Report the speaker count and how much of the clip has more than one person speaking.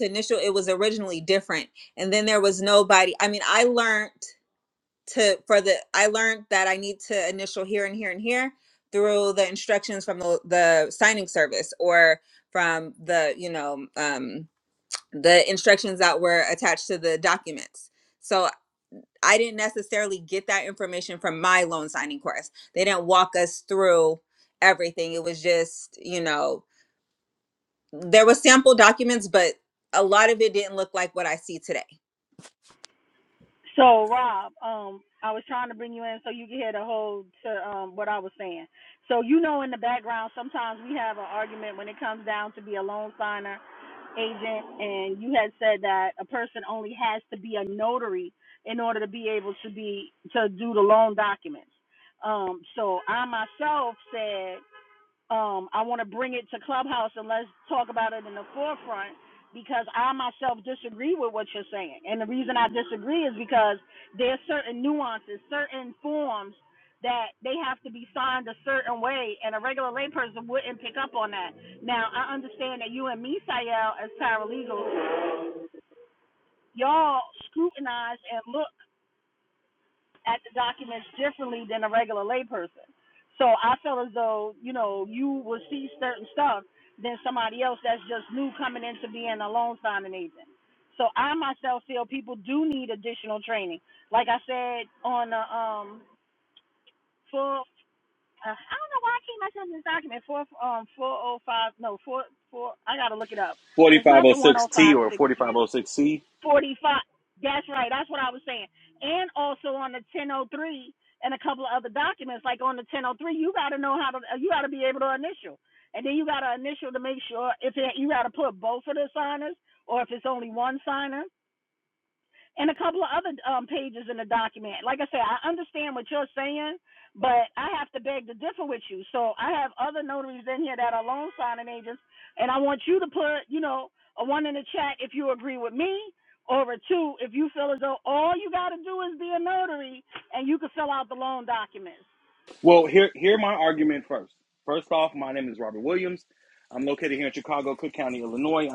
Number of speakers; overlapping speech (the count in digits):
3, about 1%